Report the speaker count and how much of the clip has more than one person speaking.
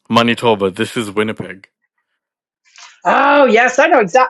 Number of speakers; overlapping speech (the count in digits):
2, no overlap